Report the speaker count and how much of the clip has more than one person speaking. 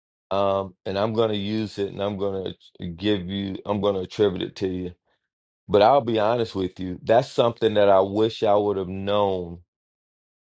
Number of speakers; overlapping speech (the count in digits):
1, no overlap